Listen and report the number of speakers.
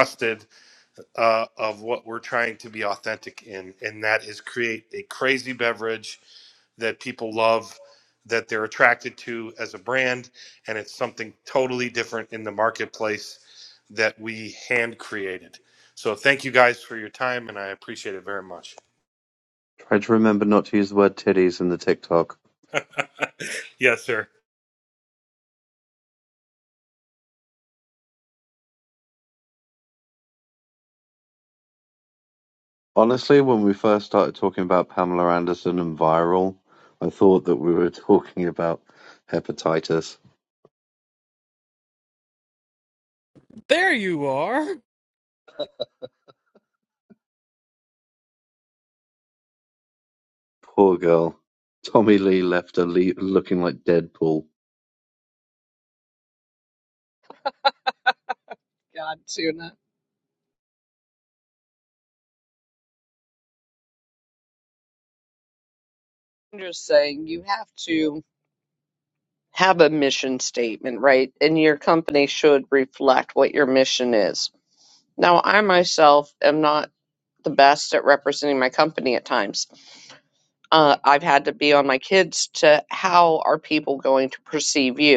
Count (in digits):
4